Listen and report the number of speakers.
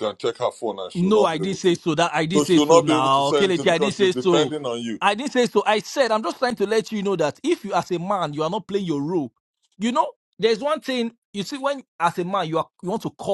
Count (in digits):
2